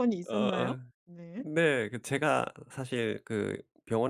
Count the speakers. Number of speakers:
two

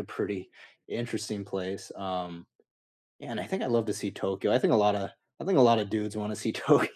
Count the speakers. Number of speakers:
one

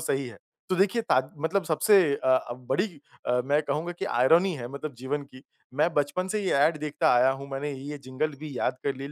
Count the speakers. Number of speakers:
one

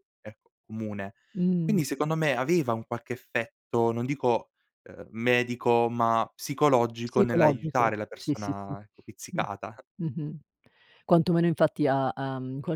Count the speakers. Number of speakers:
two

